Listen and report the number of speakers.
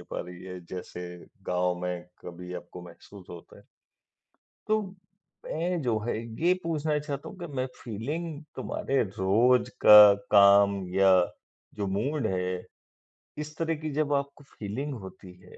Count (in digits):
1